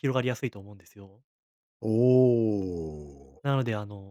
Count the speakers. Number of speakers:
2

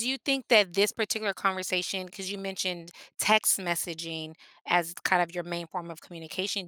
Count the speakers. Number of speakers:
1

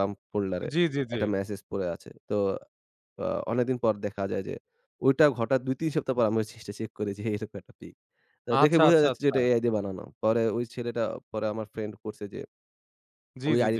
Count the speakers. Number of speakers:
2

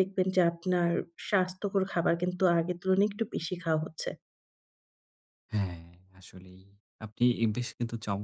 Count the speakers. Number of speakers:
2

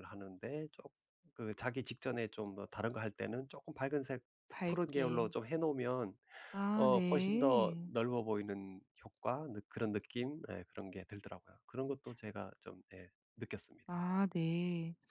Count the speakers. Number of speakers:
2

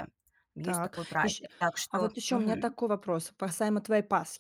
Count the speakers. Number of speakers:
2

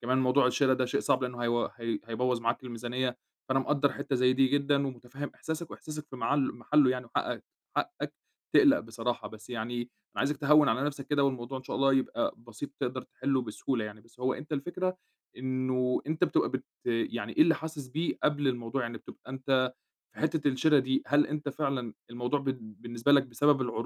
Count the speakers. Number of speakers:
1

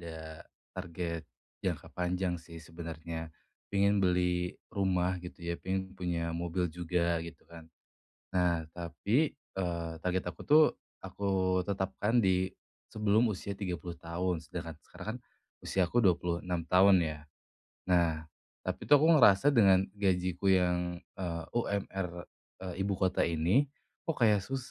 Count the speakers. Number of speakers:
1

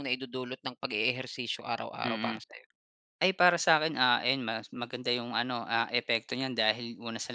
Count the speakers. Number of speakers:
2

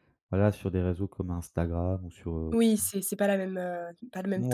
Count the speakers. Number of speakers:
2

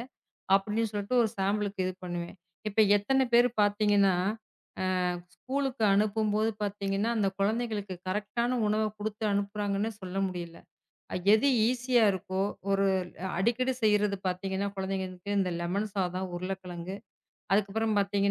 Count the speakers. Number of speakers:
1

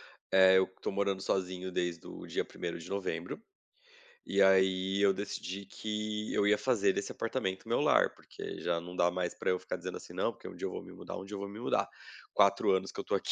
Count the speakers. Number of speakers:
1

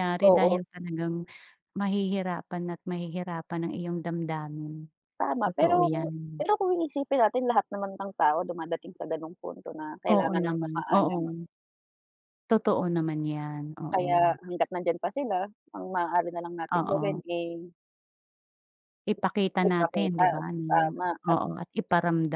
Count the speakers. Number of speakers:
2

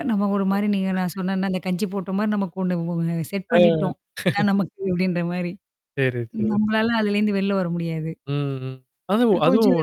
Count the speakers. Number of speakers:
2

